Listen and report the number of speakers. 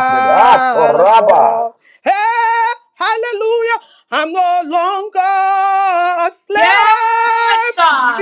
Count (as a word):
three